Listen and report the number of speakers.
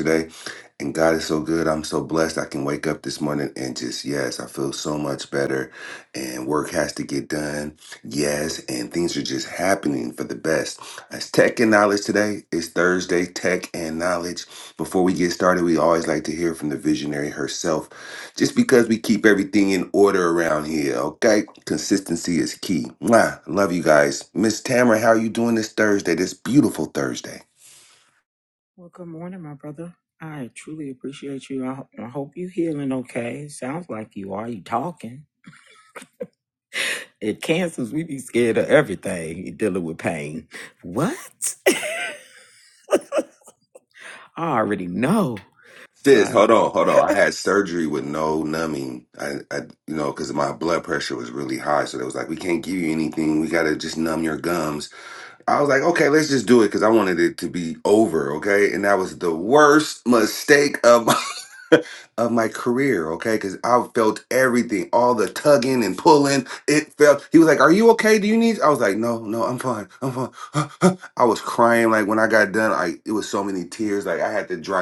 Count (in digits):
2